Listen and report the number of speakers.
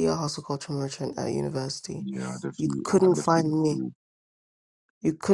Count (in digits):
2